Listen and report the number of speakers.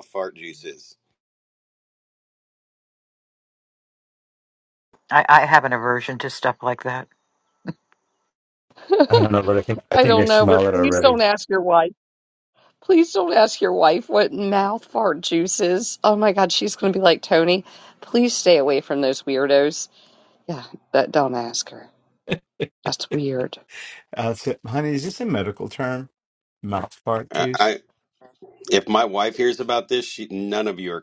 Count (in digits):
4